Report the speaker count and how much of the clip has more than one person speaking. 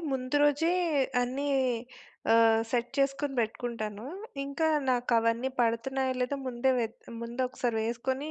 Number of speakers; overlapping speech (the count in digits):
1, no overlap